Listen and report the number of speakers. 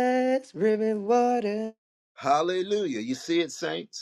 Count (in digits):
2